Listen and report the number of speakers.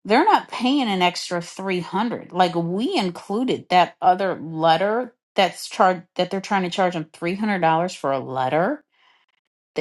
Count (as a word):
one